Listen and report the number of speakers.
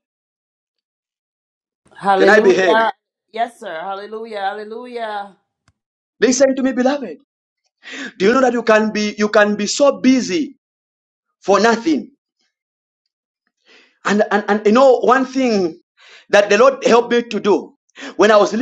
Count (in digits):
2